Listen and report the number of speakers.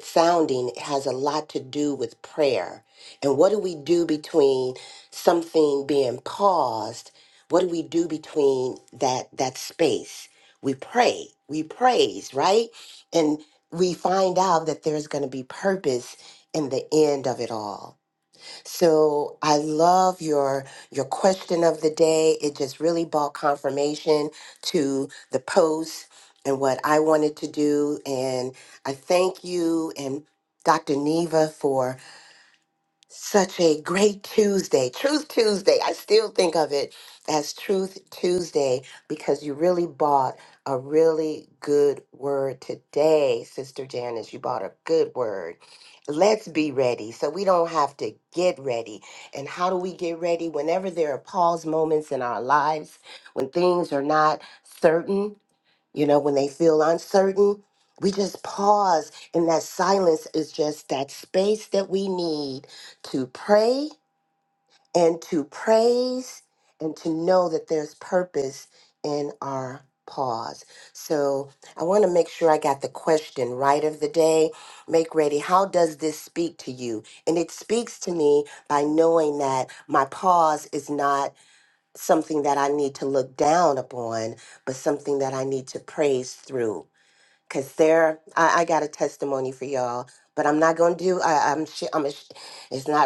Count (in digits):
1